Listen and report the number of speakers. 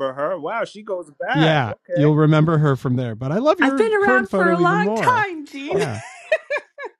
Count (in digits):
3